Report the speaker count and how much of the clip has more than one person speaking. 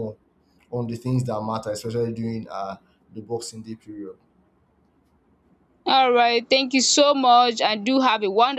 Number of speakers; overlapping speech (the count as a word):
two, no overlap